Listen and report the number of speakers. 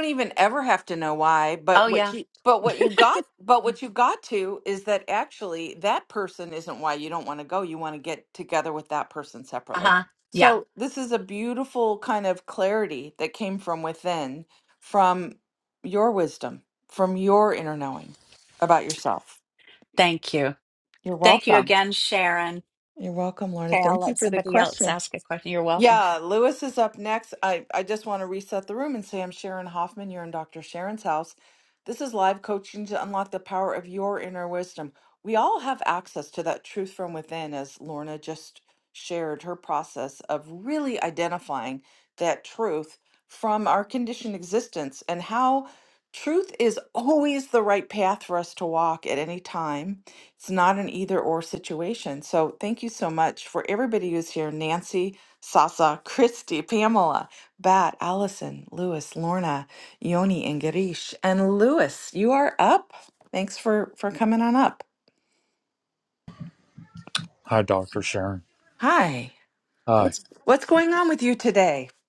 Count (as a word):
three